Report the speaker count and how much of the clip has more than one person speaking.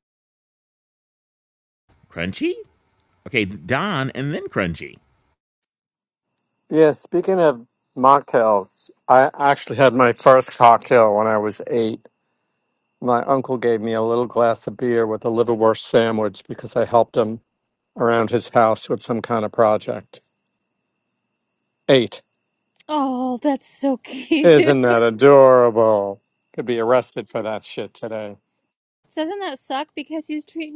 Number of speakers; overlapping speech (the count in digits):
3, under 1%